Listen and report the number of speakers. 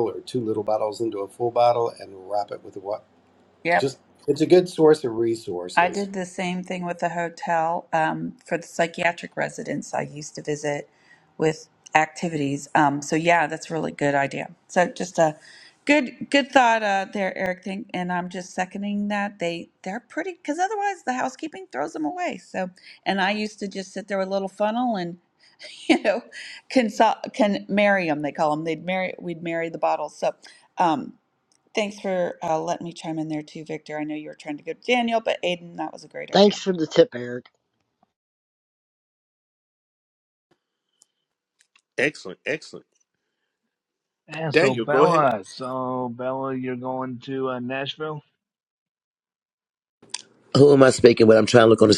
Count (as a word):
six